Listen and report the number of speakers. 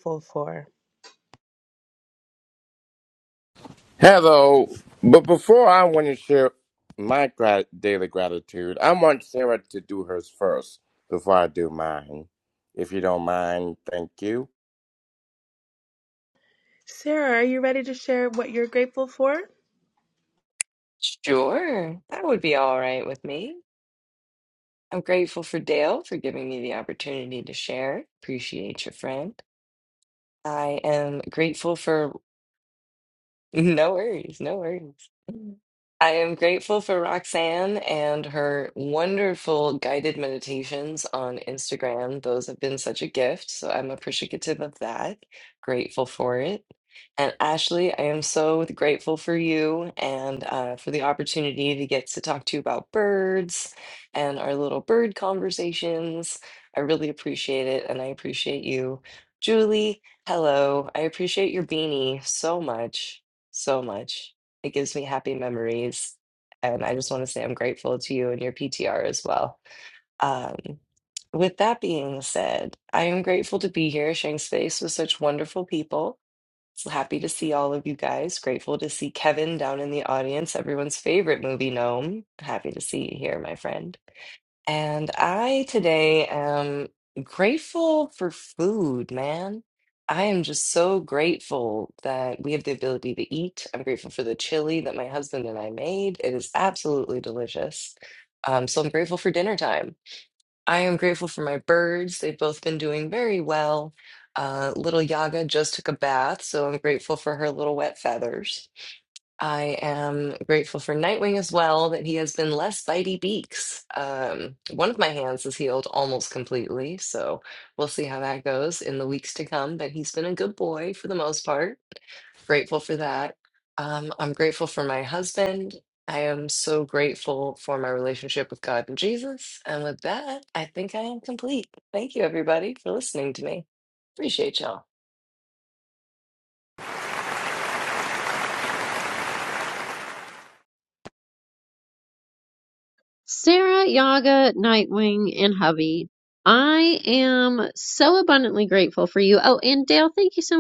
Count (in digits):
4